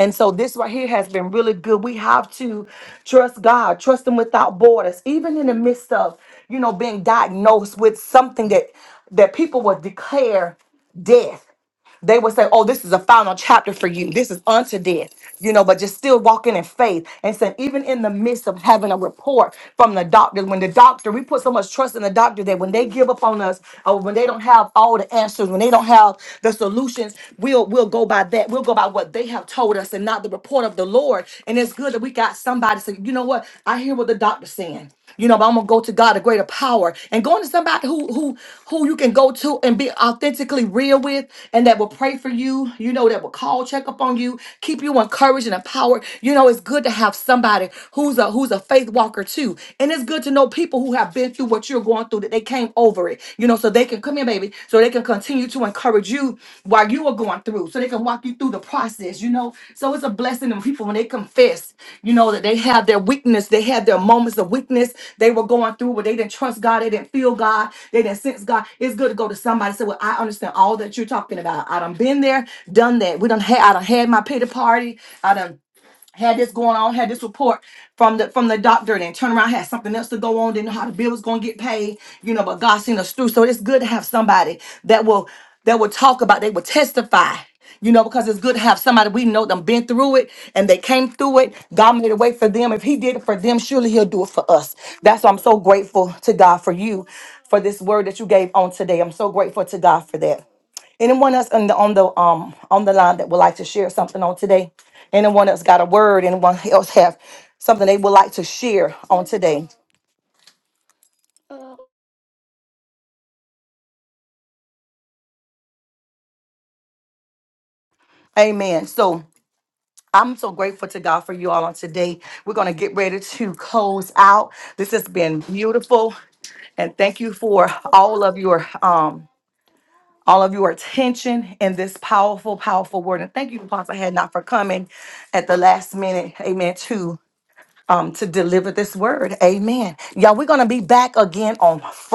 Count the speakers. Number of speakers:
one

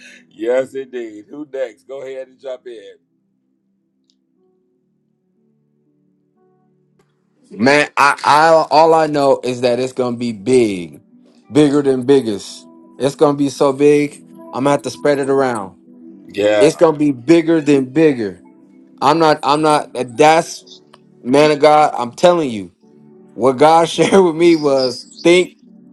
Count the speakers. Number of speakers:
two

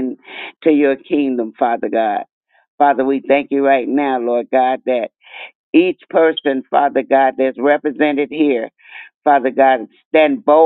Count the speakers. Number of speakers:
one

